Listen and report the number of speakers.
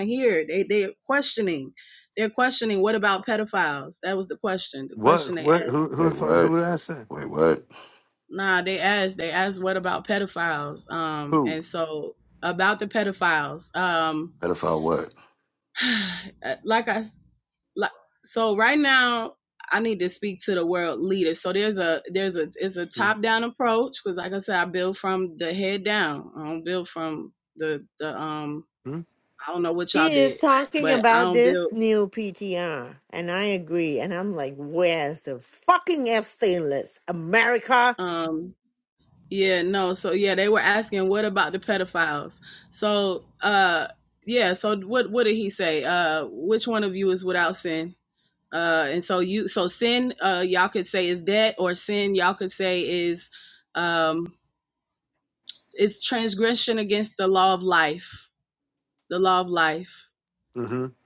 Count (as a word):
four